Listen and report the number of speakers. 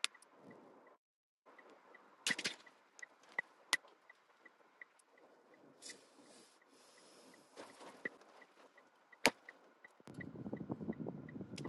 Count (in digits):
0